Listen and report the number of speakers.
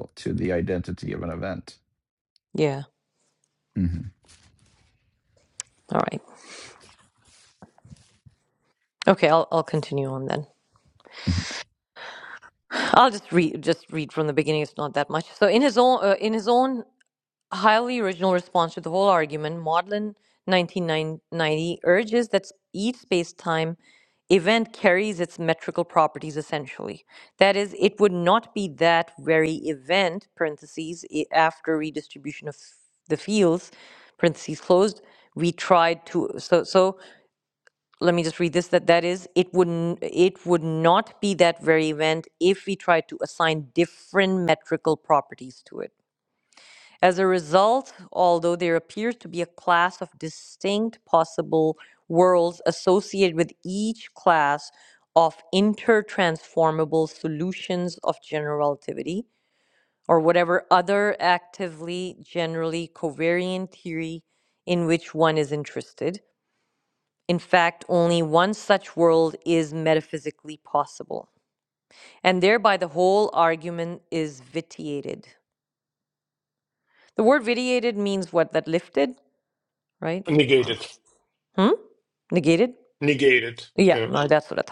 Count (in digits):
3